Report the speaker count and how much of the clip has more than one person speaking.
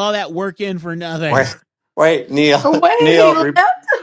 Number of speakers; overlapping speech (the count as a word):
three, about 20%